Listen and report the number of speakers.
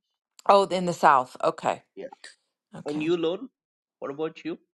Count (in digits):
2